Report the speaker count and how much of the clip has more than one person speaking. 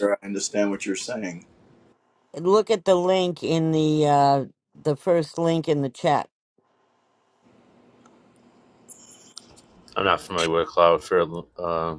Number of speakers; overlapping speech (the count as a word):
three, no overlap